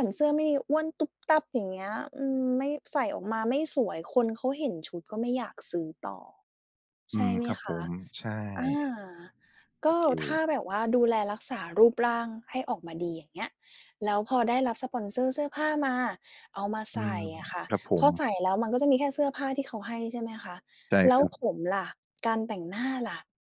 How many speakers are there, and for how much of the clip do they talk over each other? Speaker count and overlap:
2, about 8%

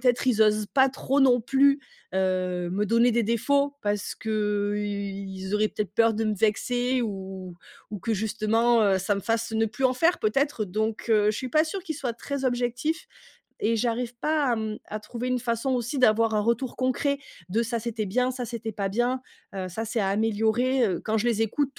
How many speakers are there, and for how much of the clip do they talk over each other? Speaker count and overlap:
1, no overlap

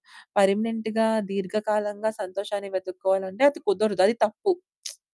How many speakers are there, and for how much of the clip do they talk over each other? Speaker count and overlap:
1, no overlap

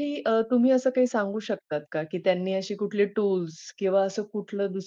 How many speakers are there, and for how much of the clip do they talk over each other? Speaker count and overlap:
1, no overlap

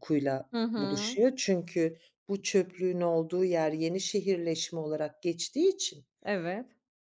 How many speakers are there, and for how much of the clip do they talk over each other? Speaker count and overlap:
2, about 6%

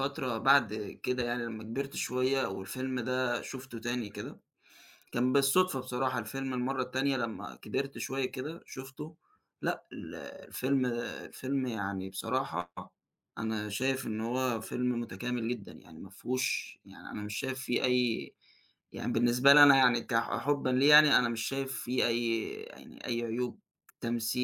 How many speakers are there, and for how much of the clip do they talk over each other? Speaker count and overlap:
1, no overlap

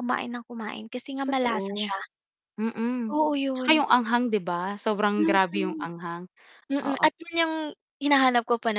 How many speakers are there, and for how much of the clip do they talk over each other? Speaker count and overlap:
2, about 17%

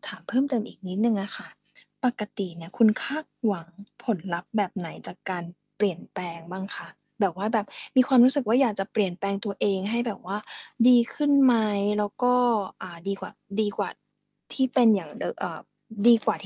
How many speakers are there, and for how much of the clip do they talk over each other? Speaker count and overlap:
1, no overlap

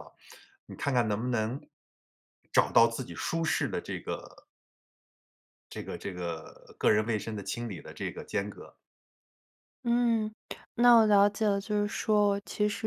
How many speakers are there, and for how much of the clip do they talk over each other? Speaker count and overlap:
2, no overlap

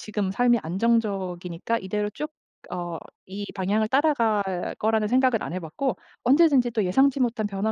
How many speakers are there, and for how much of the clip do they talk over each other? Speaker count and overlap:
1, no overlap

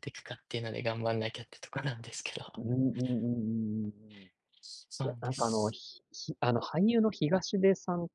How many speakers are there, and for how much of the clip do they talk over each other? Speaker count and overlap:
2, about 5%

